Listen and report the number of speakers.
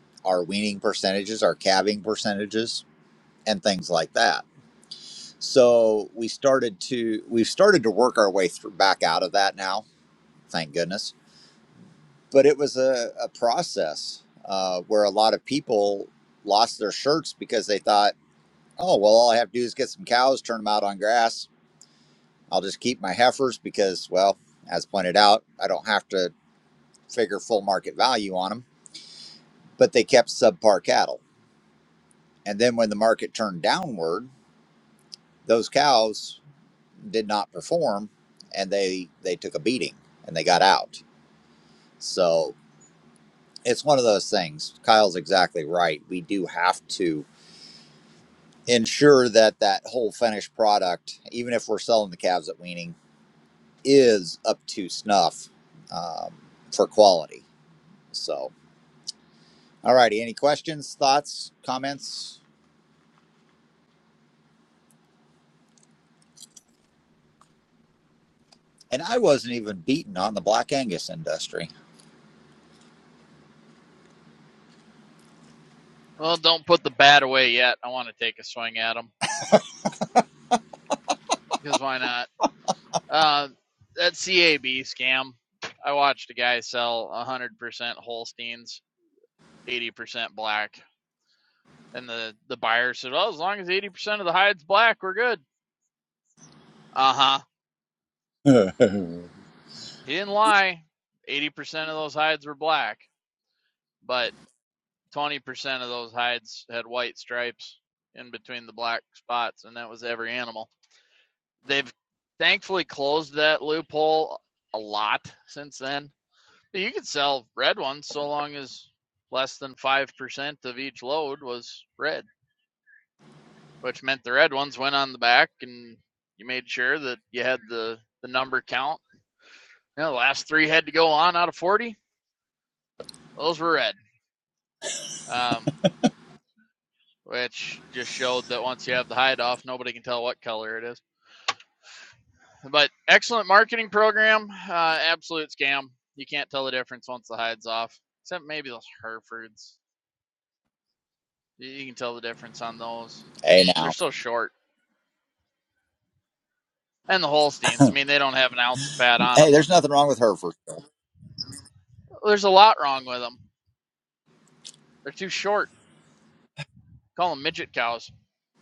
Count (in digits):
2